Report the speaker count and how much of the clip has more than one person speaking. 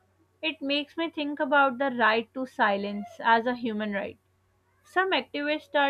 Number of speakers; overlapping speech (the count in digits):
1, no overlap